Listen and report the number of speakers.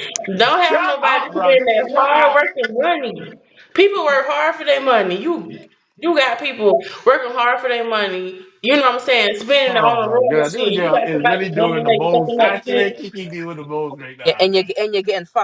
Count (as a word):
three